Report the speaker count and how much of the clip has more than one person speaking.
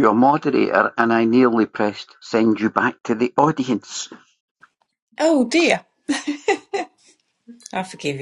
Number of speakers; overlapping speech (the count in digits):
2, no overlap